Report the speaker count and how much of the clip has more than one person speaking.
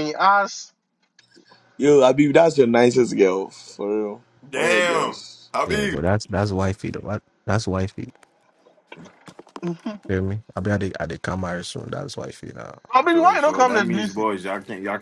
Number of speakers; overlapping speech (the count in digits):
4, about 13%